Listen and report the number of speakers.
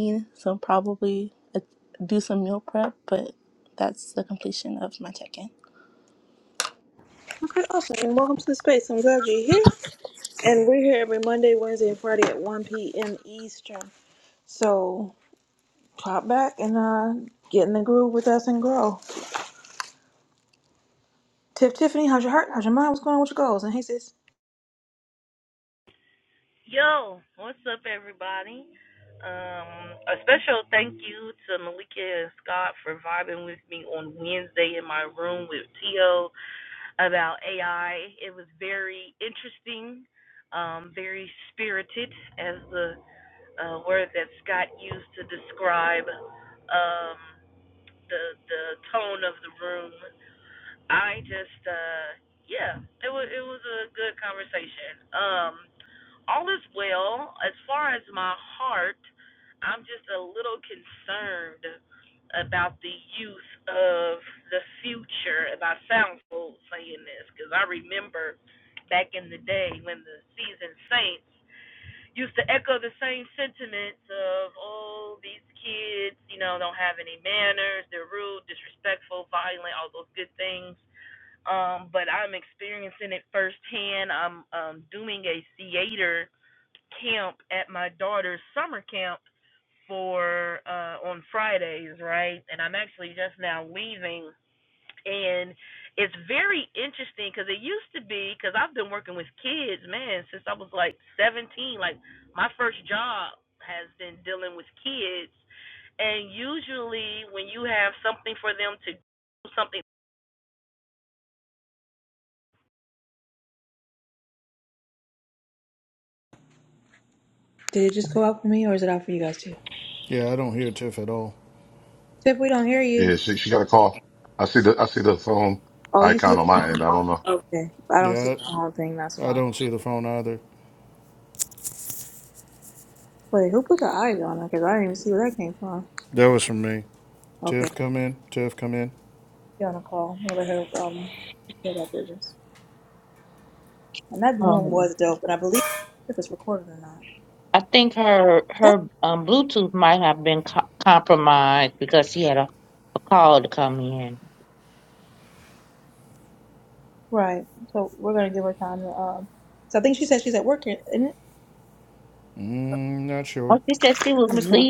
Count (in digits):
6